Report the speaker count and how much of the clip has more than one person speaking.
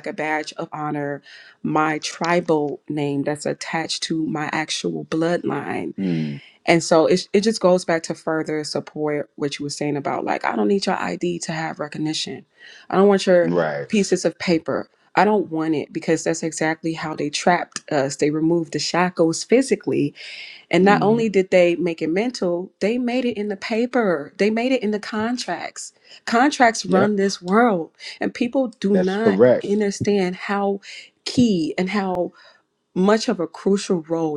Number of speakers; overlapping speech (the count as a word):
two, about 4%